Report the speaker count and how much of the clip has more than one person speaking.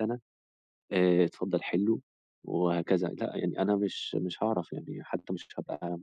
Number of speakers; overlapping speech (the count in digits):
1, no overlap